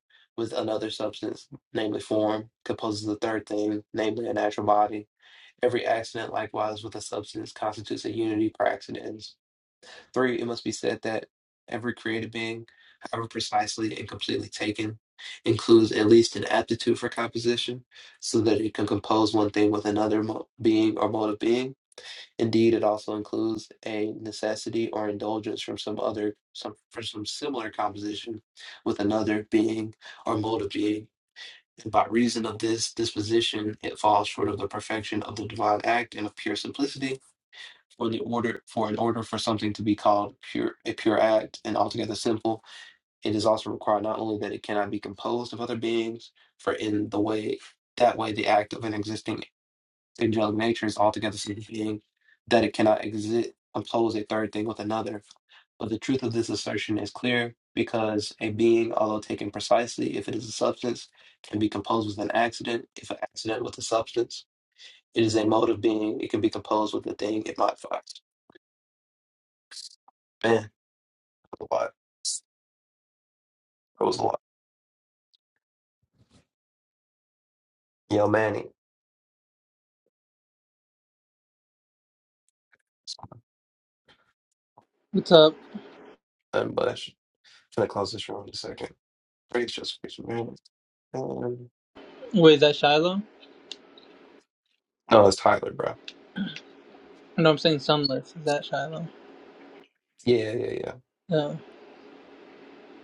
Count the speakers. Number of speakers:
two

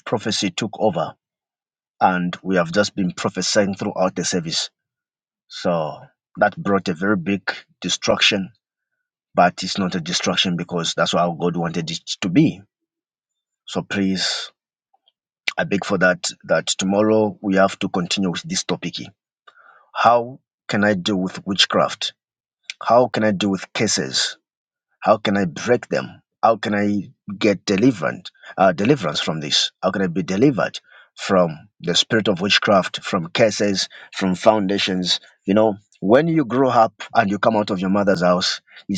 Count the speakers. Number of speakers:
one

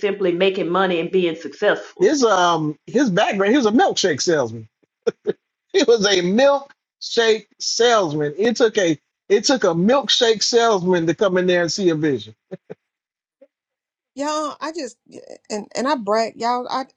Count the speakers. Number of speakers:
three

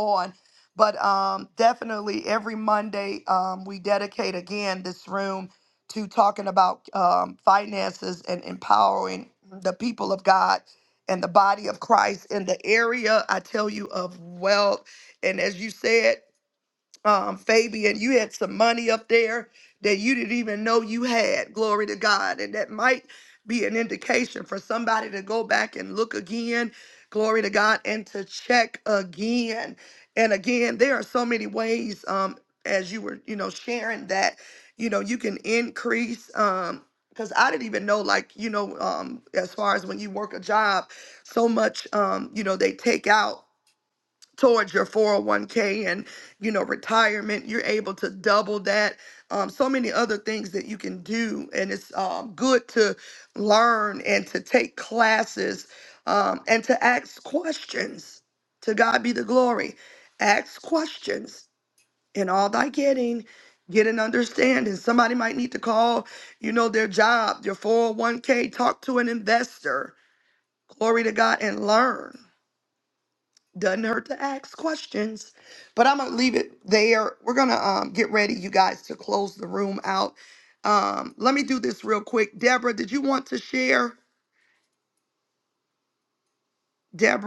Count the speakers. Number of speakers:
one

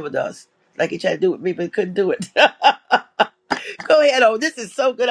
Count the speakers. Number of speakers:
one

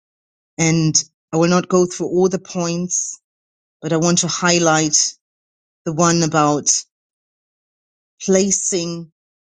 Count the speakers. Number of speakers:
one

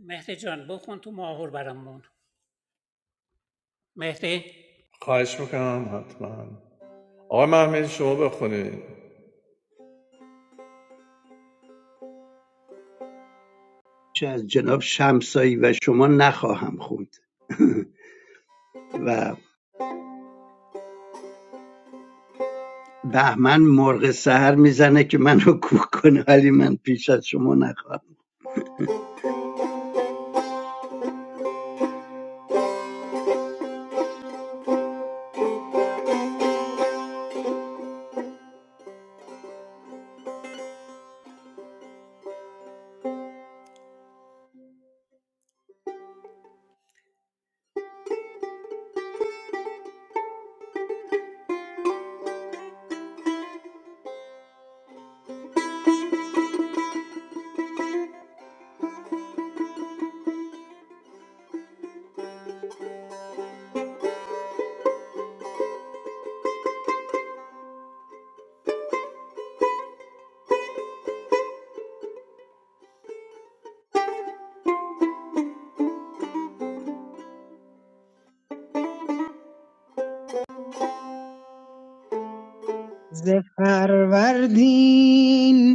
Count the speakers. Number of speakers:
four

